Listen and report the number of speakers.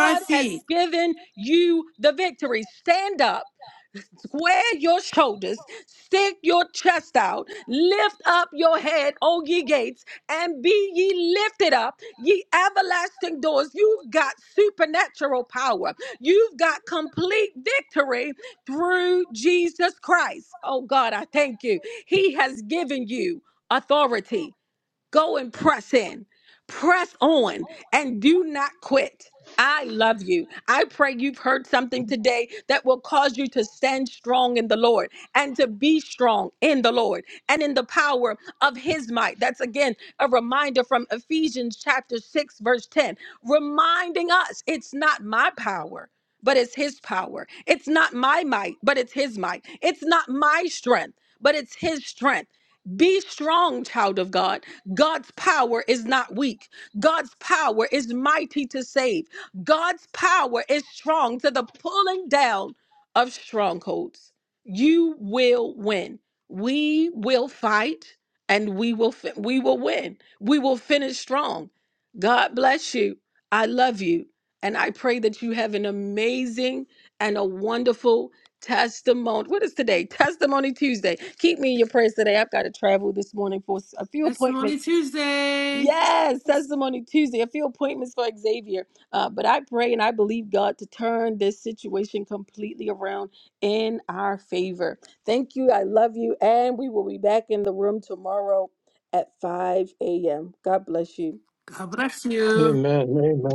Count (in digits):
3